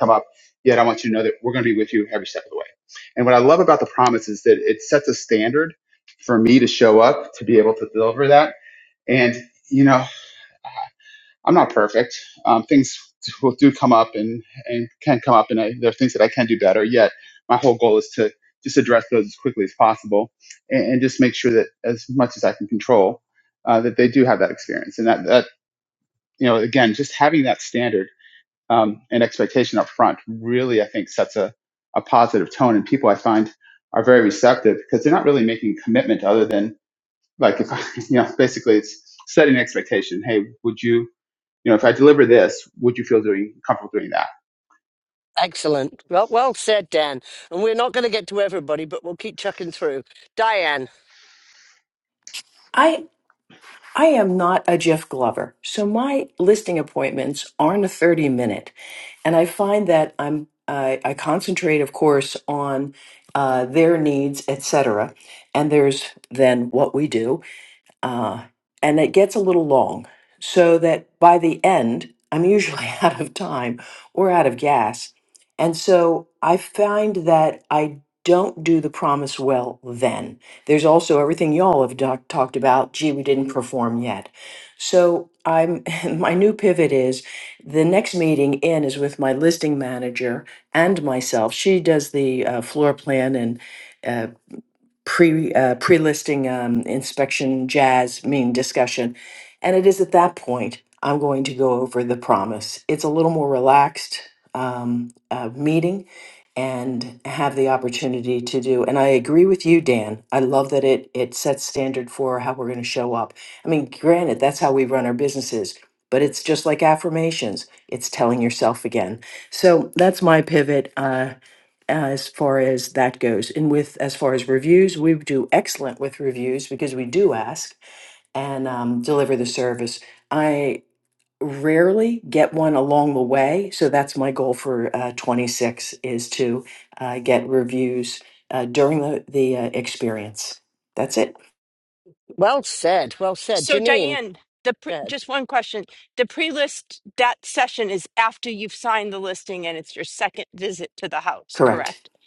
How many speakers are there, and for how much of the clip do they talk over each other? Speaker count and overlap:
four, about 1%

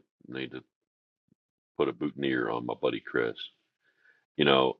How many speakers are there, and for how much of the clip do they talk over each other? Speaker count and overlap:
one, no overlap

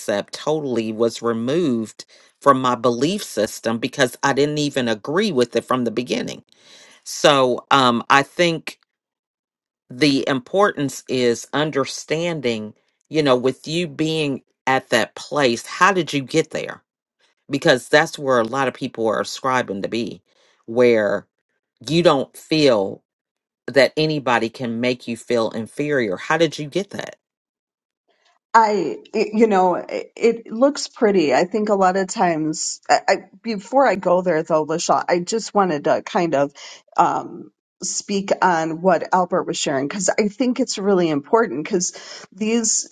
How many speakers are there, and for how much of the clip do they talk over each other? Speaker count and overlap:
two, no overlap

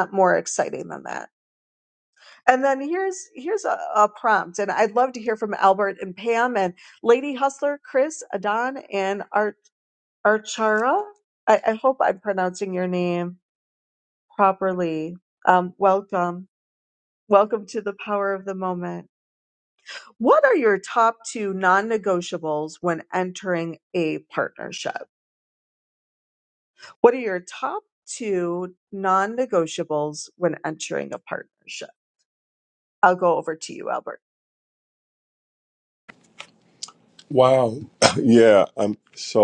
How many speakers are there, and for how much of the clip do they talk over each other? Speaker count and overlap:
two, no overlap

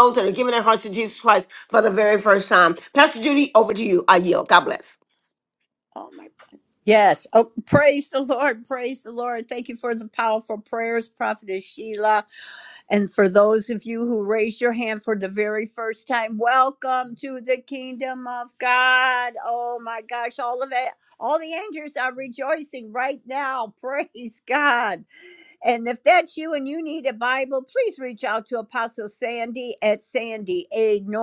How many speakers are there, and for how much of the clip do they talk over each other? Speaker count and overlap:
two, no overlap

